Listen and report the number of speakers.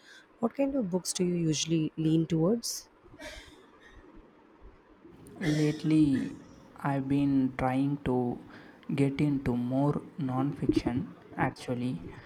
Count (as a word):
two